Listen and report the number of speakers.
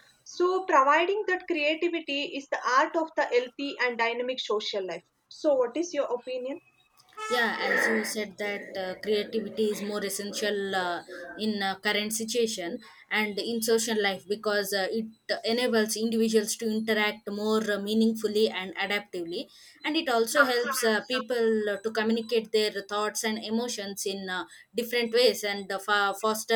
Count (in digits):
2